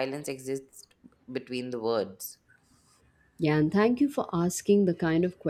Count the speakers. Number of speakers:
2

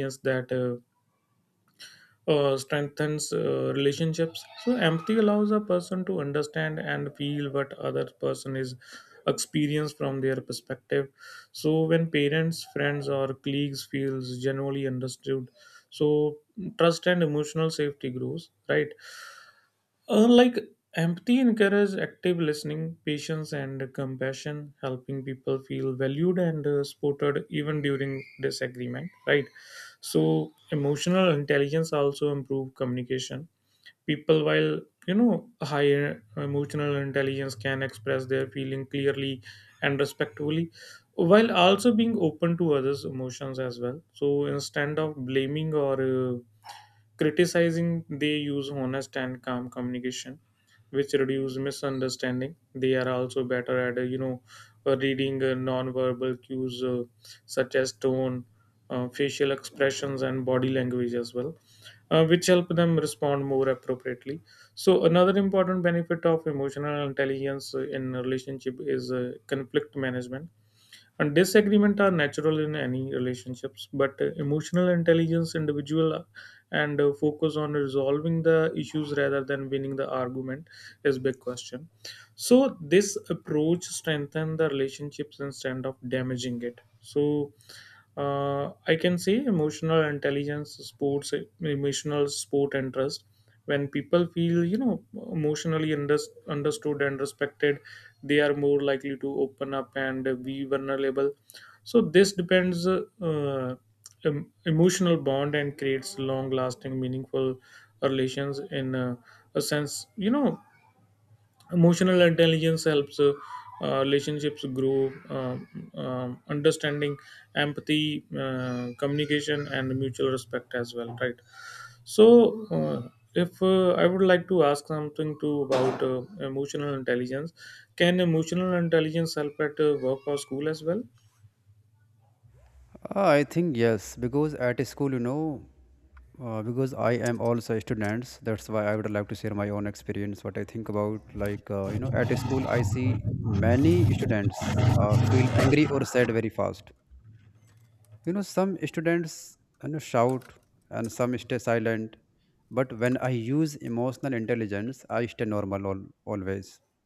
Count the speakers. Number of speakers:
2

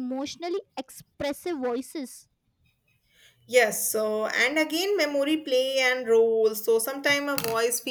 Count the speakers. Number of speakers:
2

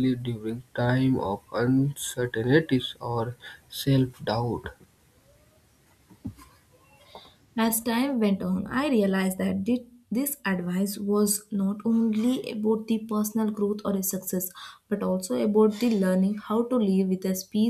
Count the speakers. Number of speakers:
2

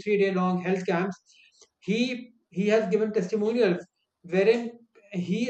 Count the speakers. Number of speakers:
1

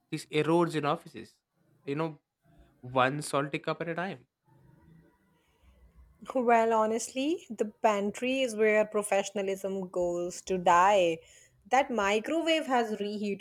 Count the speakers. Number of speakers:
2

